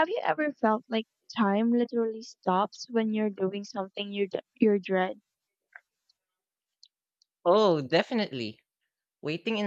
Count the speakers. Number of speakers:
2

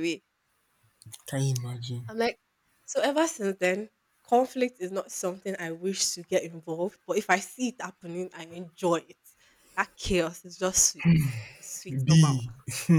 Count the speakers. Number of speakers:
2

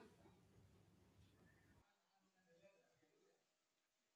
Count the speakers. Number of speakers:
0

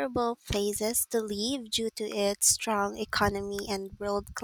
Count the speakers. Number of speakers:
1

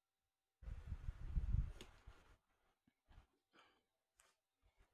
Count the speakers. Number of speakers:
0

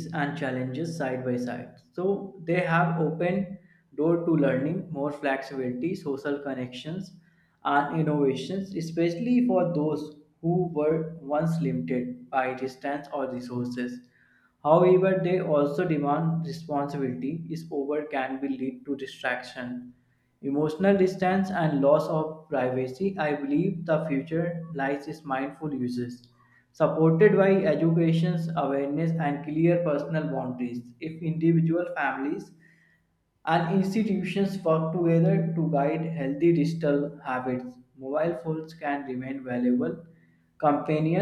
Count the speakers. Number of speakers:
1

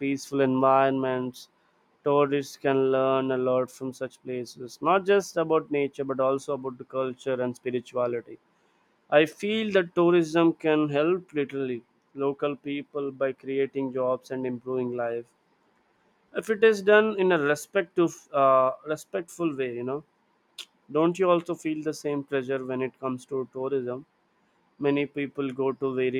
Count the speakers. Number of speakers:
1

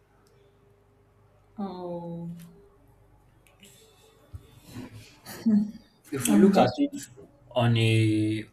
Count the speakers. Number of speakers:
2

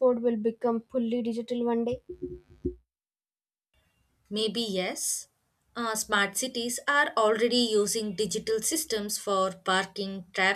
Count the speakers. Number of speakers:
2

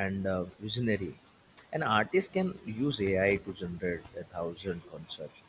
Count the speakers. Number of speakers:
1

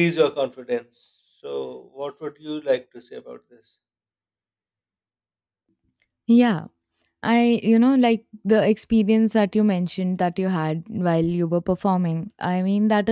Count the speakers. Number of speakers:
2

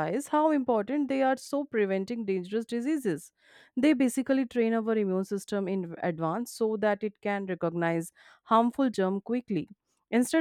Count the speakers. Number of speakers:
1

